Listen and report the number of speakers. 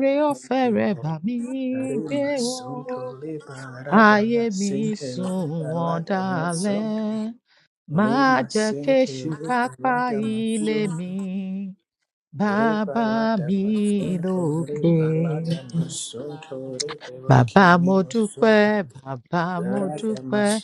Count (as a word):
two